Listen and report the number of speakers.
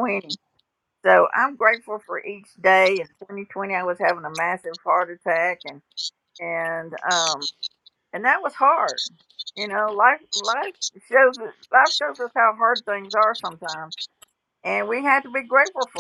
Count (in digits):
1